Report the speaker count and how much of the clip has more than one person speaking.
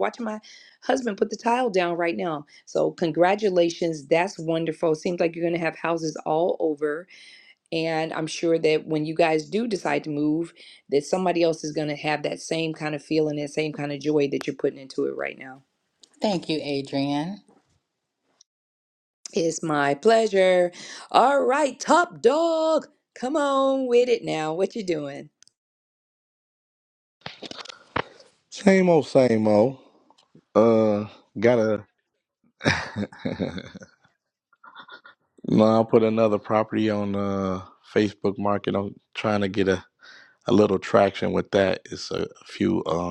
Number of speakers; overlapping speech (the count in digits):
3, no overlap